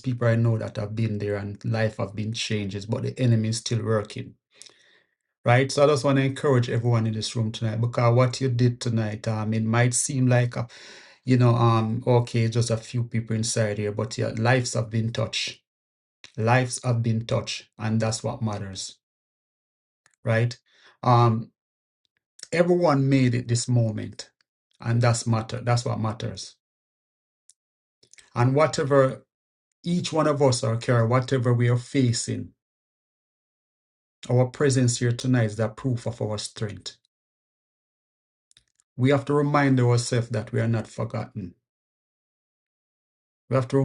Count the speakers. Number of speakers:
1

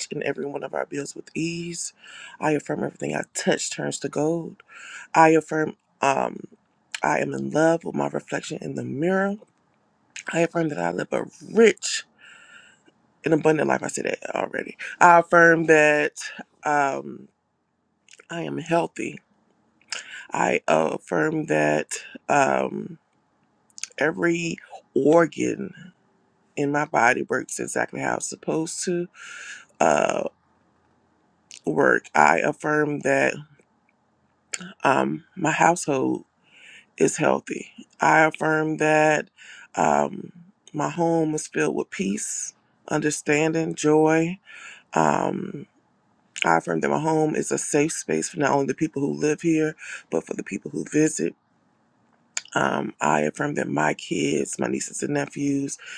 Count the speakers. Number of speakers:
1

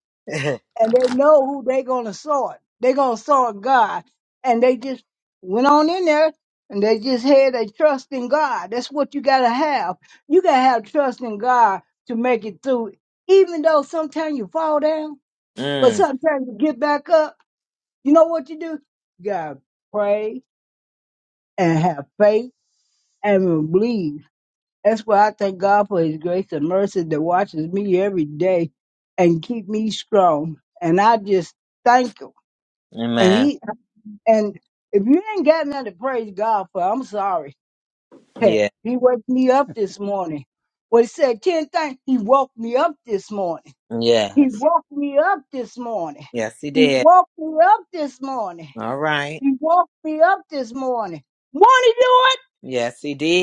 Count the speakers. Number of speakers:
2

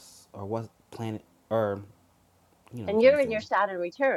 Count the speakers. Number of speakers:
2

